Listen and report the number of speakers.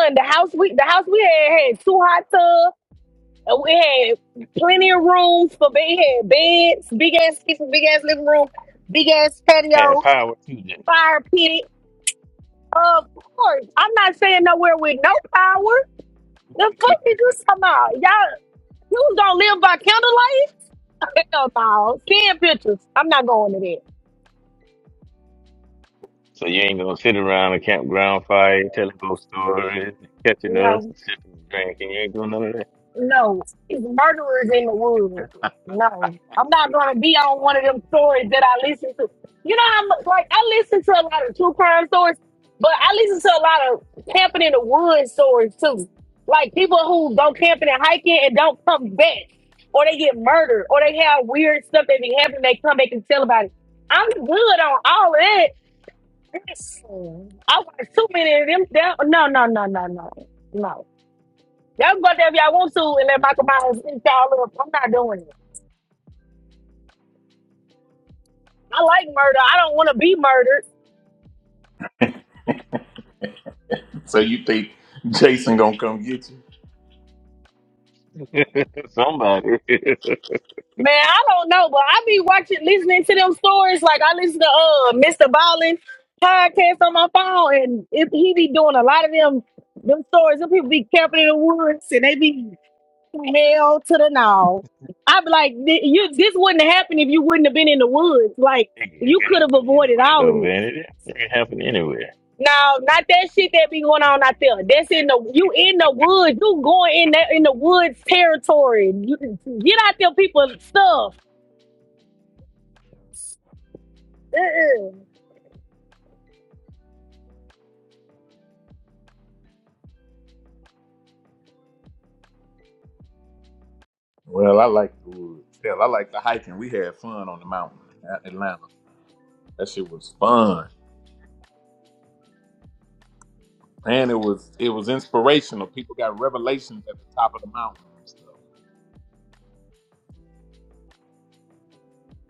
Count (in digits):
3